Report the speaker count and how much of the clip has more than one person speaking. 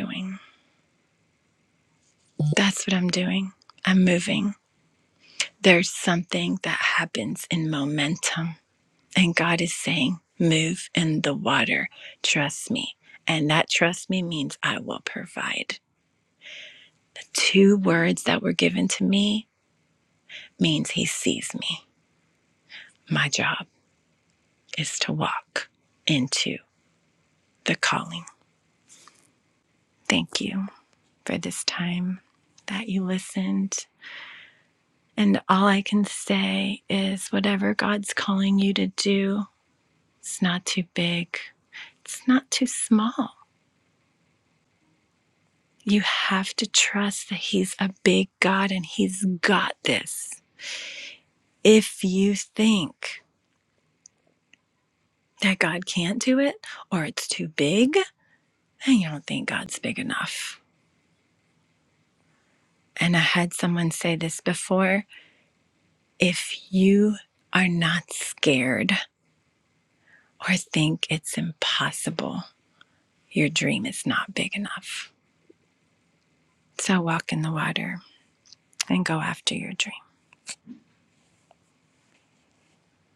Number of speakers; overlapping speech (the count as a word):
one, no overlap